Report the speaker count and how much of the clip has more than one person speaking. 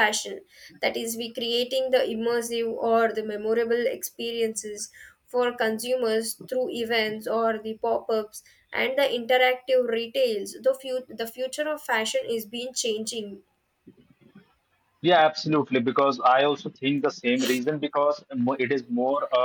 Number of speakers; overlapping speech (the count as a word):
two, no overlap